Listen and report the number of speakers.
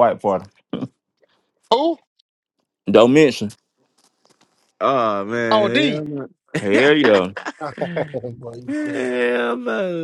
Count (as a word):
three